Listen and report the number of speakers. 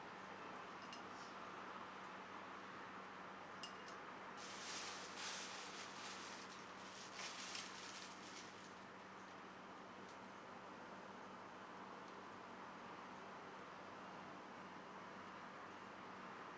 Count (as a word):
zero